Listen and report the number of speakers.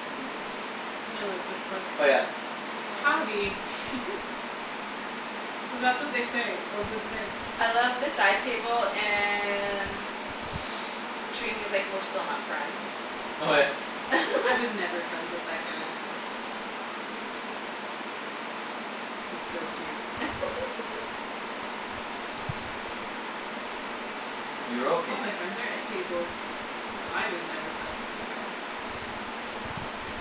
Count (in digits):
3